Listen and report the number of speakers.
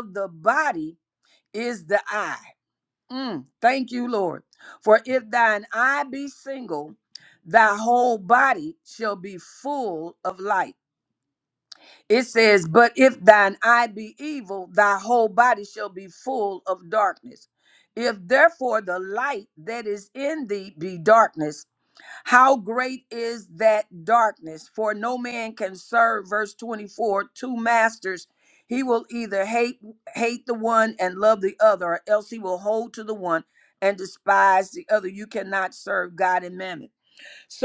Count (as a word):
one